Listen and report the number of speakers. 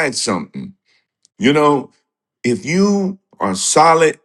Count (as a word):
one